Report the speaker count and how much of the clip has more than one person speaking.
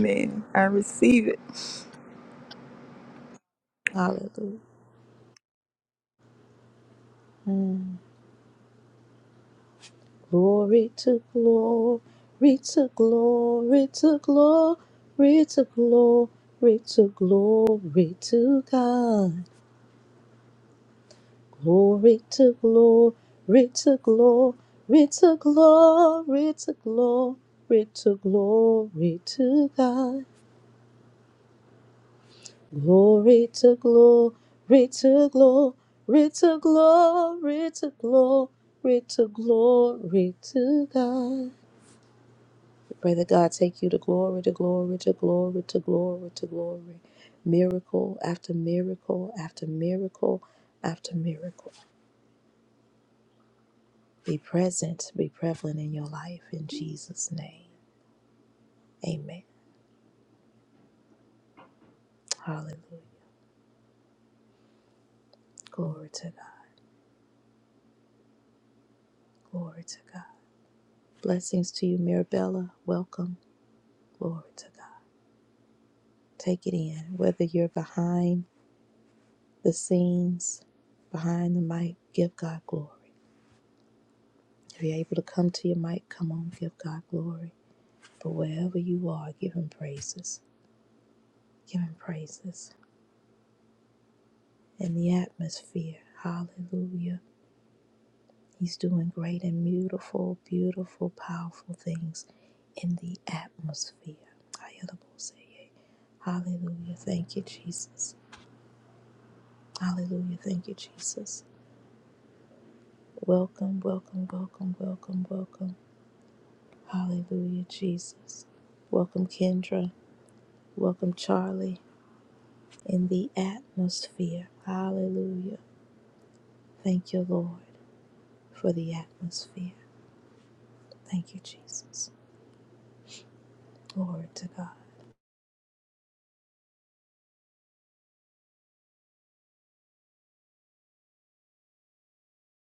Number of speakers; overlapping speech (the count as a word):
two, under 1%